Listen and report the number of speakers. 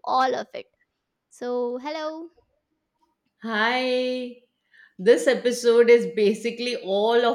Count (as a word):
two